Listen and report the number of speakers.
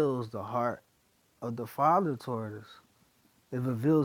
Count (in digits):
1